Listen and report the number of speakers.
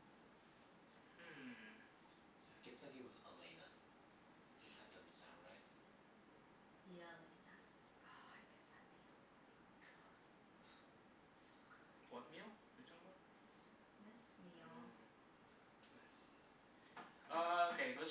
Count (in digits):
3